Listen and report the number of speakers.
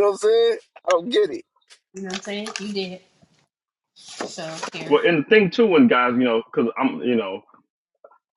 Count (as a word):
three